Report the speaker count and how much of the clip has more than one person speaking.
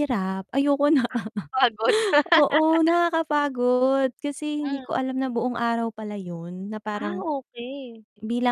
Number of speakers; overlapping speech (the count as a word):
two, about 6%